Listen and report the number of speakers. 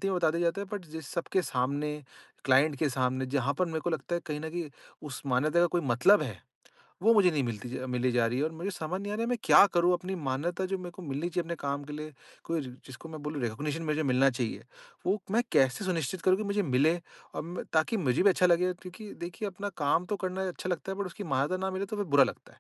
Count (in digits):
1